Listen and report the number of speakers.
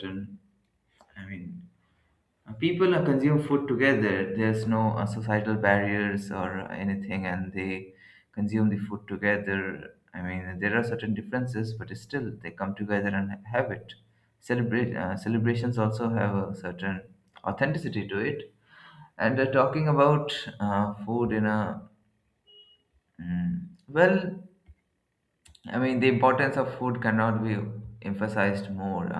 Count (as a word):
one